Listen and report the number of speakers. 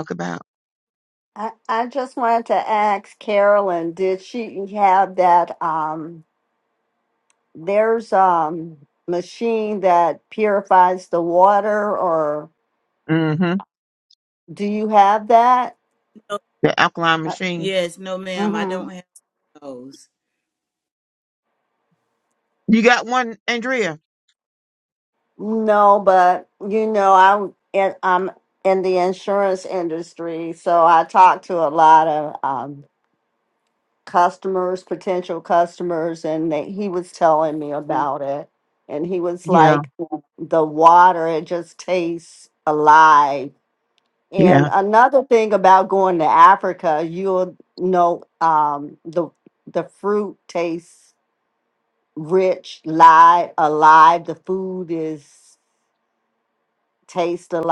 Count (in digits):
3